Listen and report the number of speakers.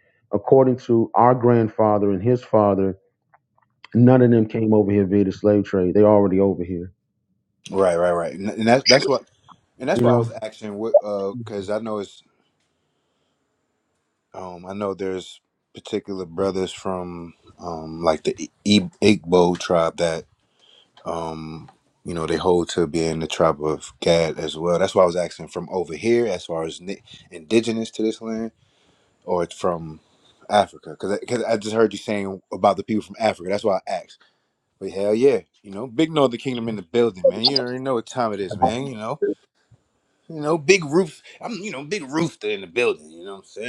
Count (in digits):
2